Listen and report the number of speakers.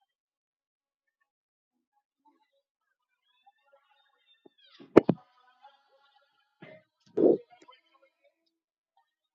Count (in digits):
0